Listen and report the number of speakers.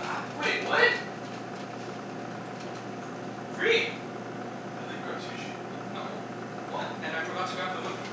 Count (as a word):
two